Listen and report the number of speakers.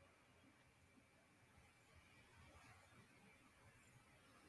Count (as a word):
zero